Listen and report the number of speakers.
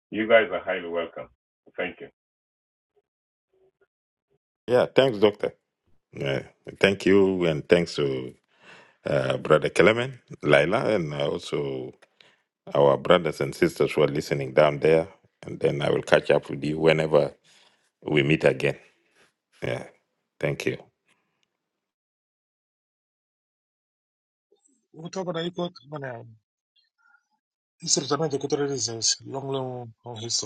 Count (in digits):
3